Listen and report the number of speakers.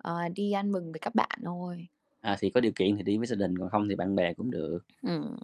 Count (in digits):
2